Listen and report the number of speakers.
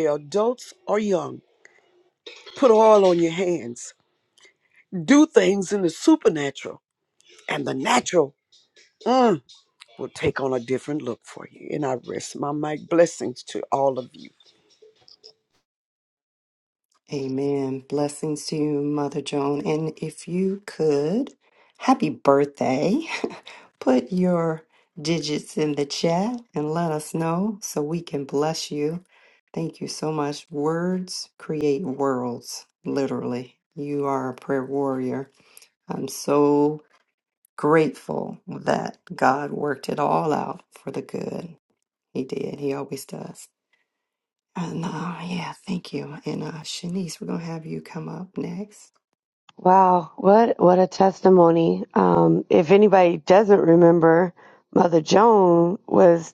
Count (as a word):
three